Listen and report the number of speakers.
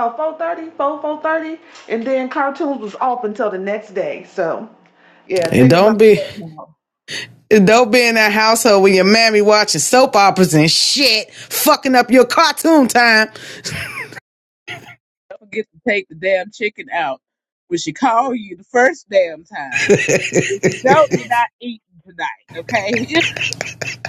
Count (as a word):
three